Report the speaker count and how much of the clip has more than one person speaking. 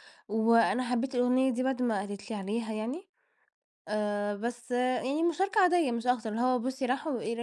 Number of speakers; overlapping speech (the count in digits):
1, no overlap